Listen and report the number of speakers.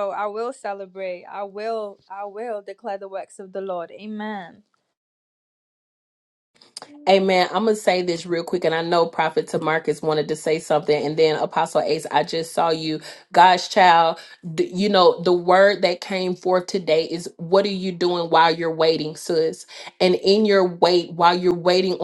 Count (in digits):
2